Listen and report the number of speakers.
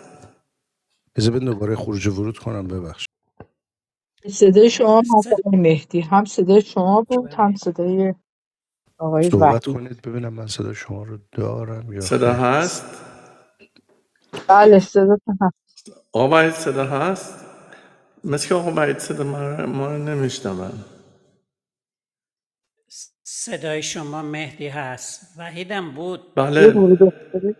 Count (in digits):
4